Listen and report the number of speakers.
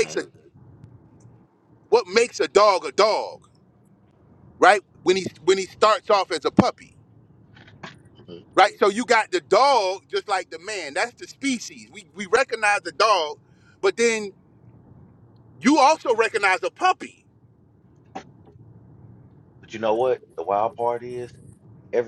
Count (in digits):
2